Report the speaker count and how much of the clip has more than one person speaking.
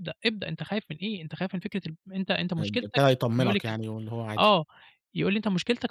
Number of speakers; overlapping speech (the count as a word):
two, about 16%